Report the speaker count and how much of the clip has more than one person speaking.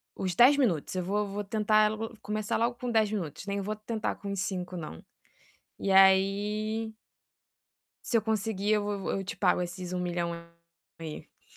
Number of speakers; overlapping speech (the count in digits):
1, no overlap